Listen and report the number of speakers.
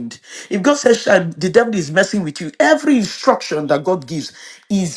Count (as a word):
one